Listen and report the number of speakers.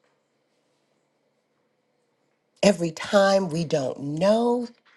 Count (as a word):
one